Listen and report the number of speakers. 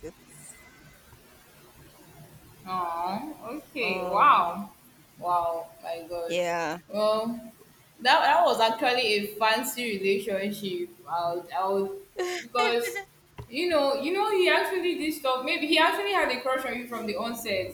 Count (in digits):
2